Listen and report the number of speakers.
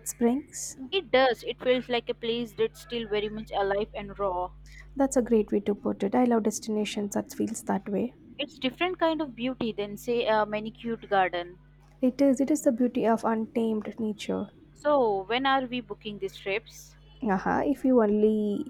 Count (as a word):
two